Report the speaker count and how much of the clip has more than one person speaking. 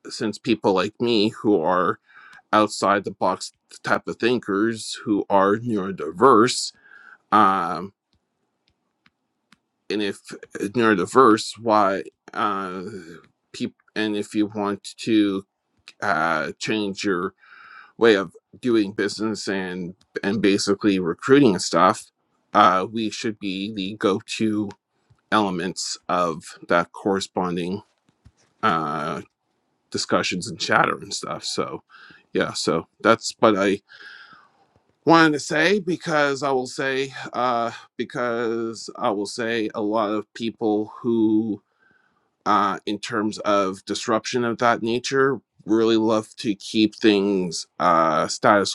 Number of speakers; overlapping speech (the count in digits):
1, no overlap